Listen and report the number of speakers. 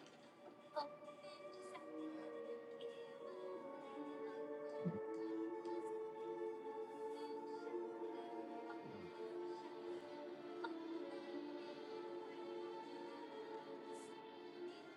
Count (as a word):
zero